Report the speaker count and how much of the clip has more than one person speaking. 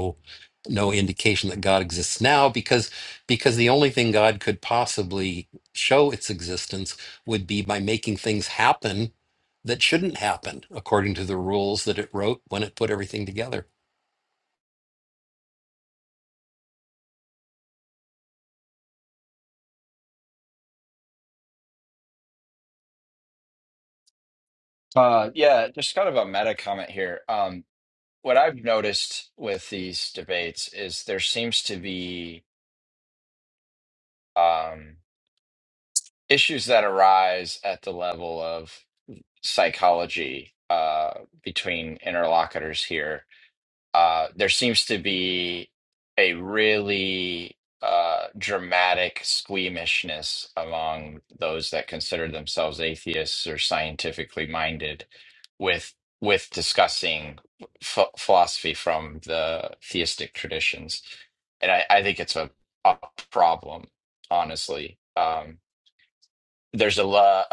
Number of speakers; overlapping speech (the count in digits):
2, no overlap